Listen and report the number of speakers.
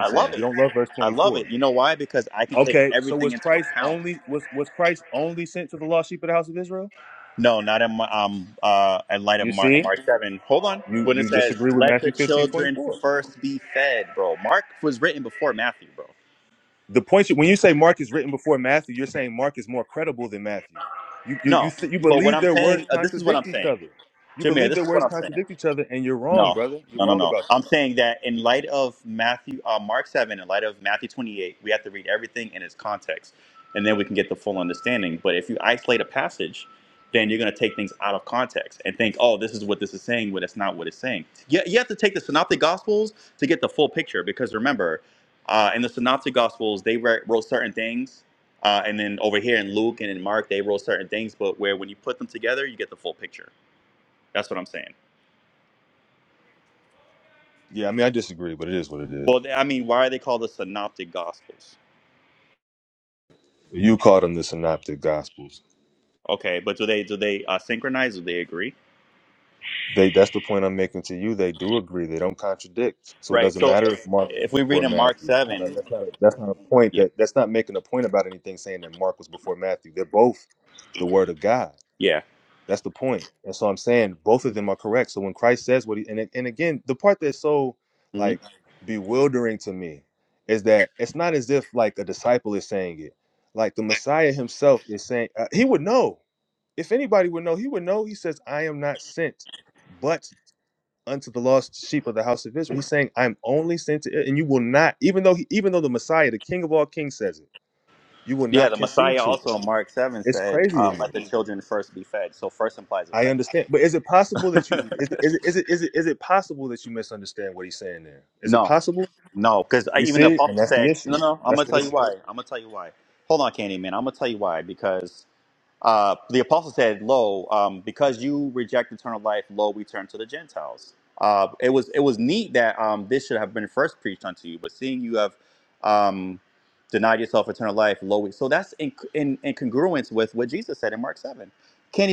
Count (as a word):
two